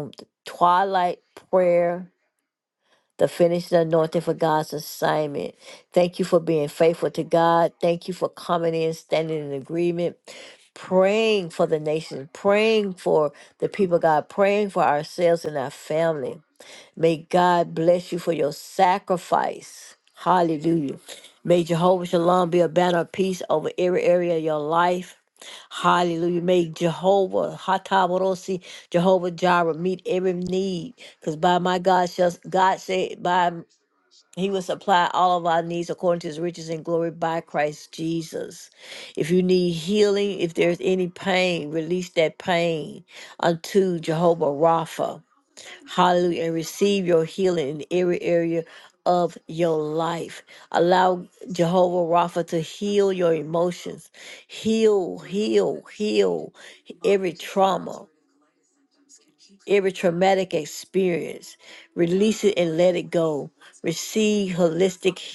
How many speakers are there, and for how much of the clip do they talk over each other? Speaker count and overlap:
1, no overlap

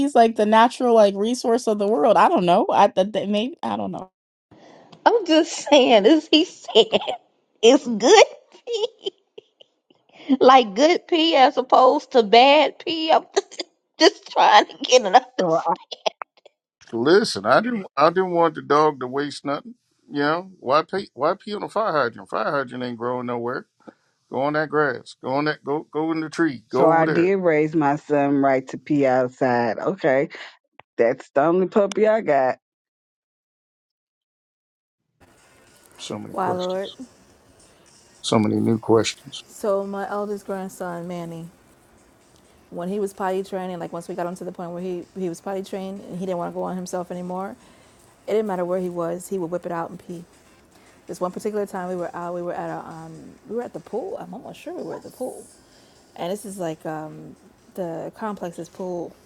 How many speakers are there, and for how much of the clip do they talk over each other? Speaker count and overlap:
5, about 2%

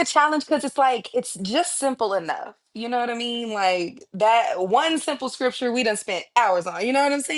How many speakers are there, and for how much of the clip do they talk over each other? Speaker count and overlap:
1, no overlap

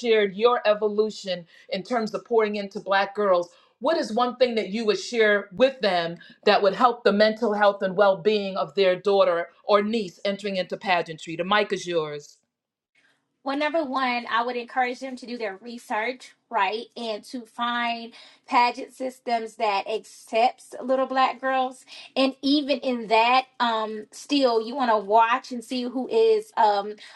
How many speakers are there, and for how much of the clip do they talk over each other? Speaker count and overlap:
2, no overlap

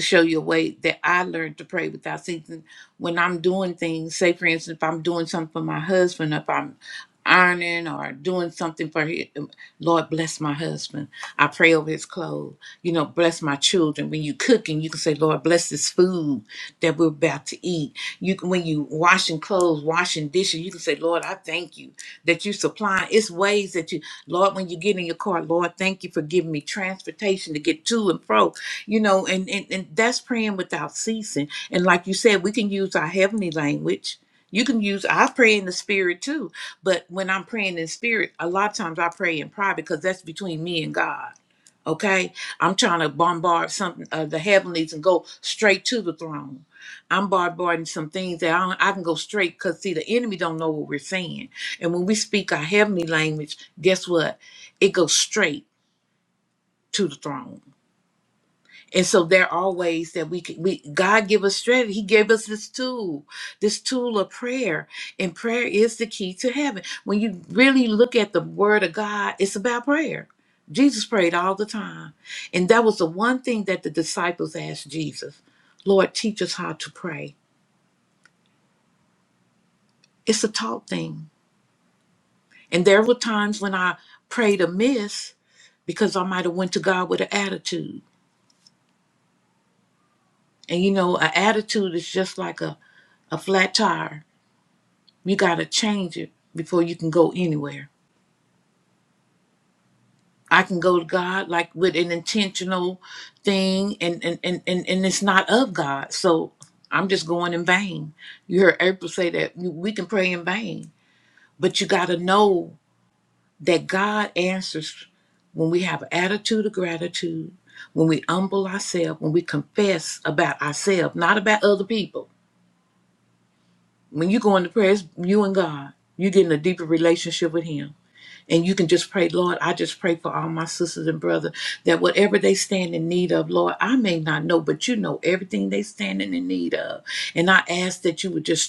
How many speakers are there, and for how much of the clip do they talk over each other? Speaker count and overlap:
1, no overlap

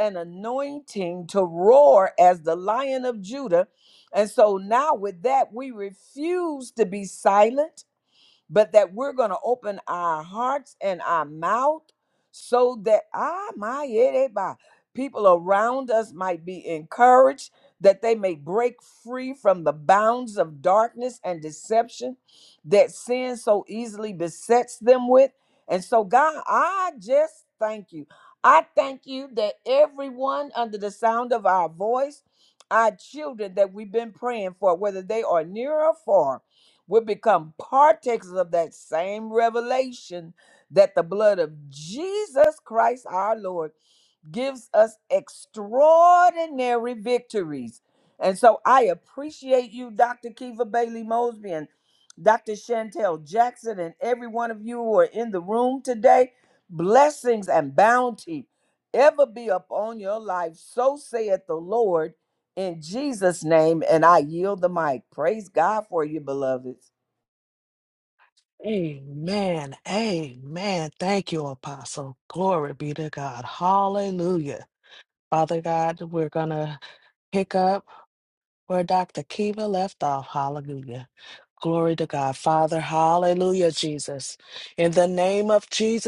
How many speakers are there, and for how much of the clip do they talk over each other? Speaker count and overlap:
2, no overlap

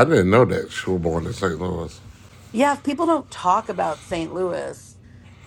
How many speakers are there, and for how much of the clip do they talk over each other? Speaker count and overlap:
2, no overlap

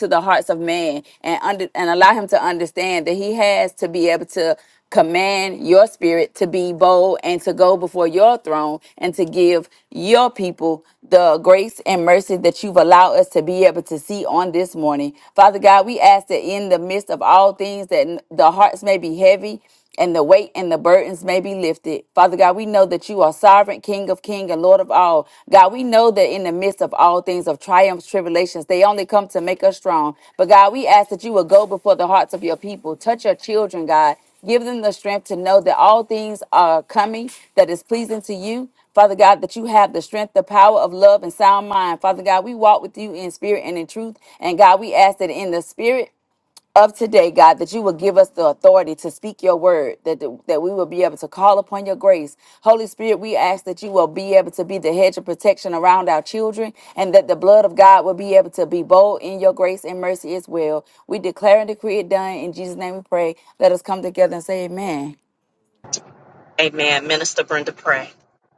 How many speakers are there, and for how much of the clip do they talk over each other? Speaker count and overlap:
2, no overlap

